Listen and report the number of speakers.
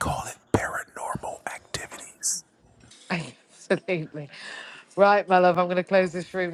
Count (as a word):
two